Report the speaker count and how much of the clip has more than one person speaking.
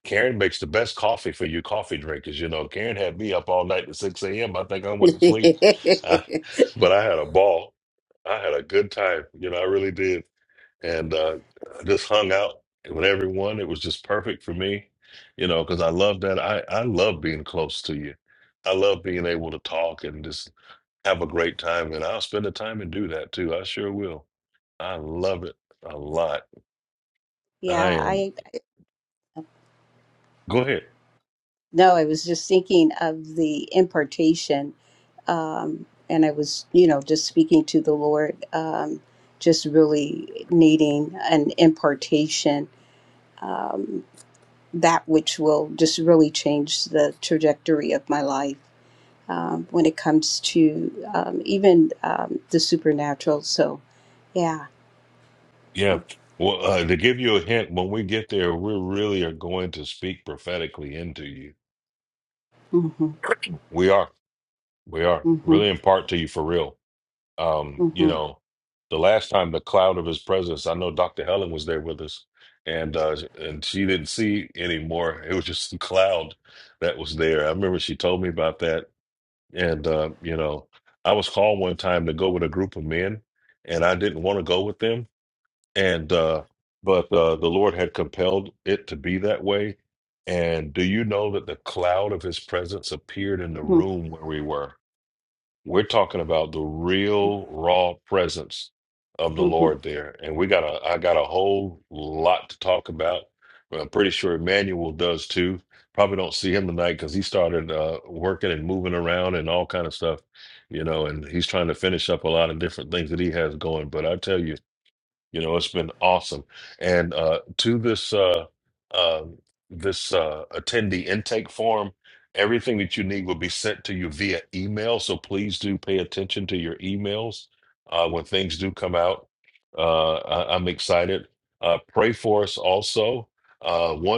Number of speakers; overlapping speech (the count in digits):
2, about 1%